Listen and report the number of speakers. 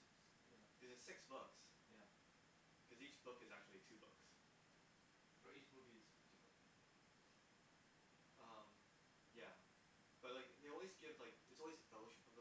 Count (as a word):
two